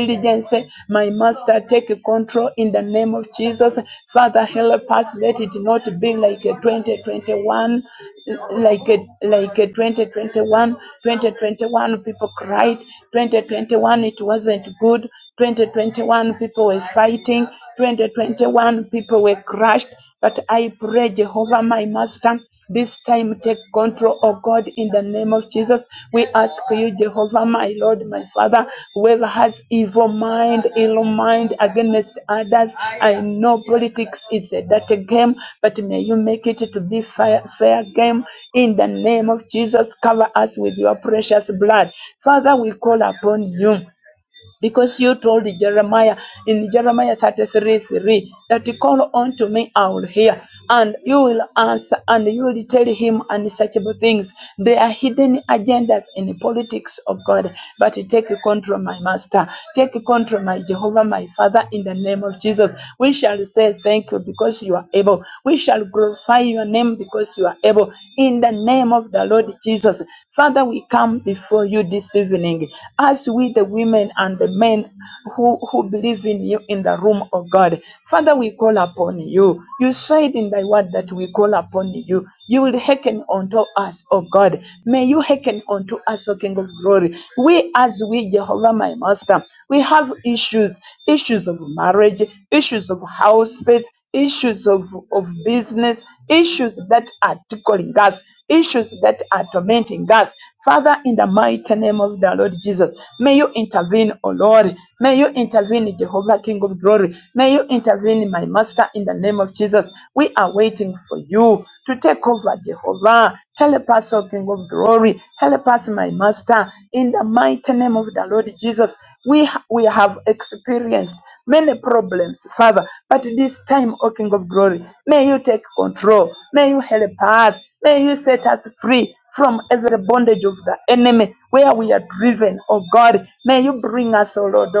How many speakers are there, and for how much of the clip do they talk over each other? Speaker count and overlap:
1, no overlap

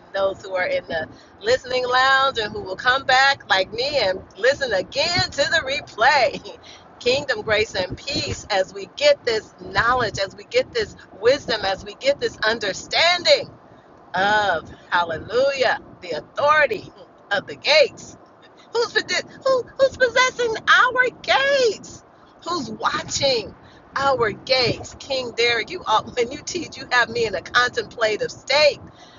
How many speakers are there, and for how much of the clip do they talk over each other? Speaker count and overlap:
1, no overlap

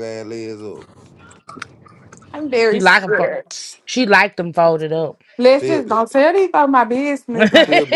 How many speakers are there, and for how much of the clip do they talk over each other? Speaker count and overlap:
3, about 21%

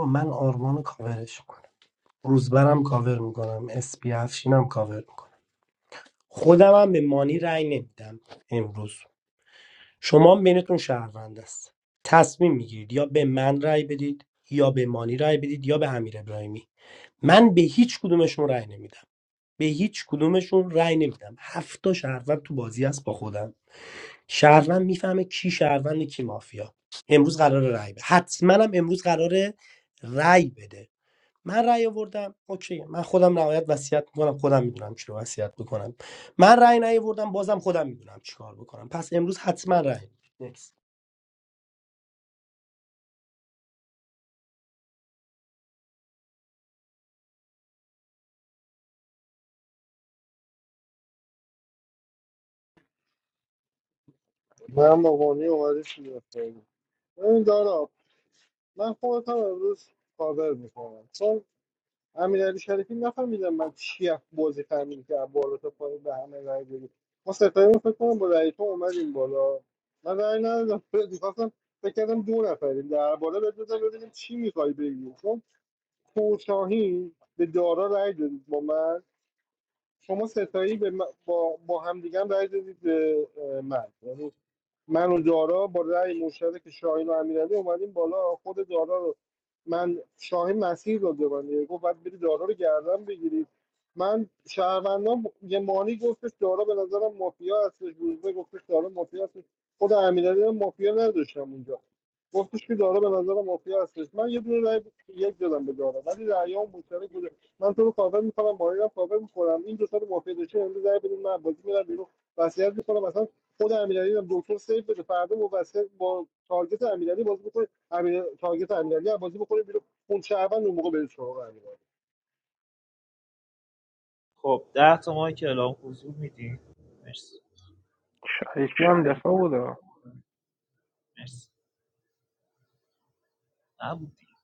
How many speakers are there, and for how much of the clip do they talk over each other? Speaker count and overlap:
4, no overlap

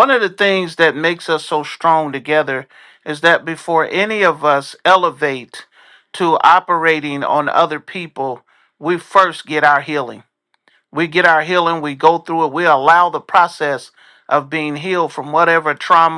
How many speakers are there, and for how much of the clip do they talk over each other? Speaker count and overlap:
1, no overlap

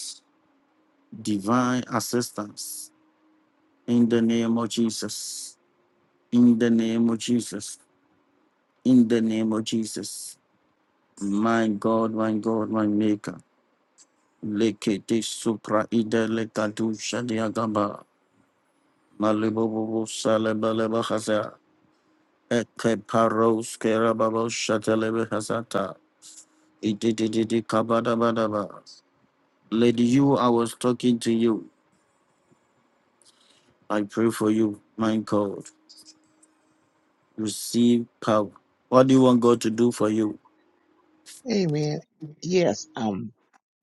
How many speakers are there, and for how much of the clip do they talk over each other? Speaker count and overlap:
2, no overlap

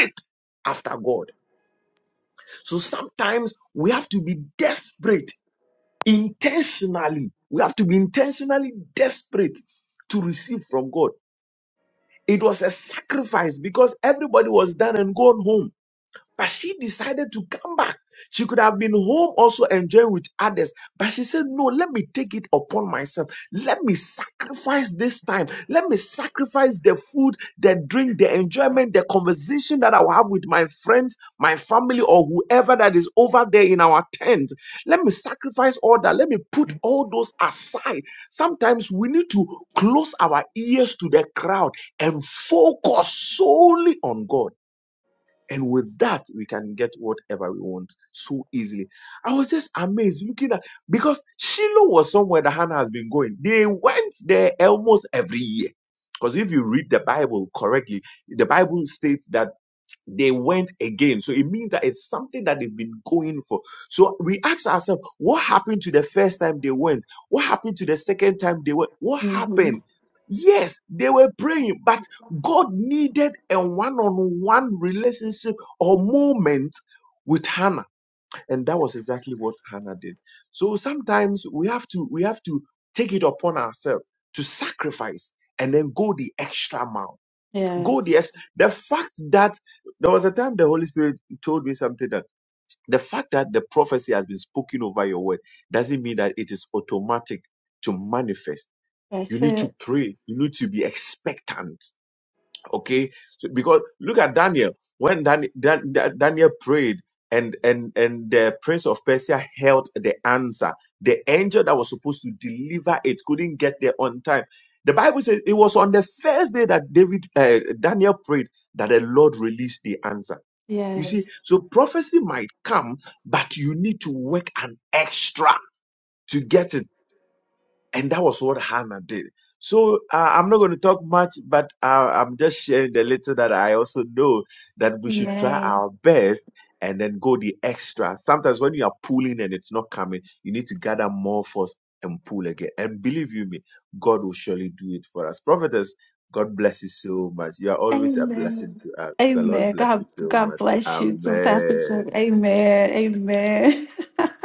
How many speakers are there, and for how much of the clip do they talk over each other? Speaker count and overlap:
2, about 4%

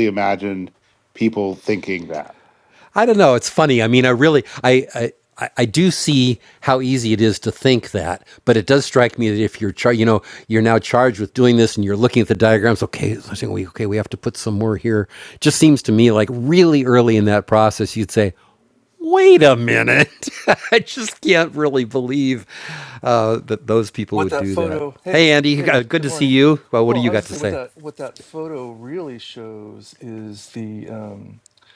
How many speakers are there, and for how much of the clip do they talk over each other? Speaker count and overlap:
3, about 7%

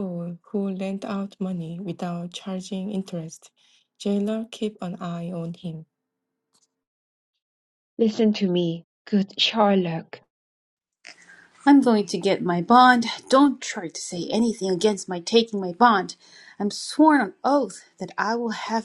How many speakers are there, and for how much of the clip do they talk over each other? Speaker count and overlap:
3, no overlap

